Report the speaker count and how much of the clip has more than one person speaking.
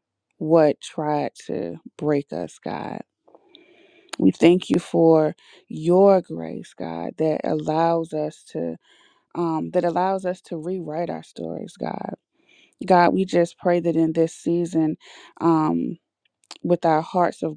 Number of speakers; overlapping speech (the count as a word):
one, no overlap